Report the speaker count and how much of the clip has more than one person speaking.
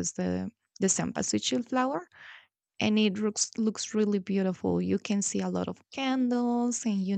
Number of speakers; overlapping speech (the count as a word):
one, no overlap